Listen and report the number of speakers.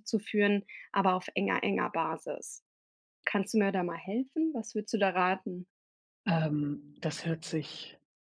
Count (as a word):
two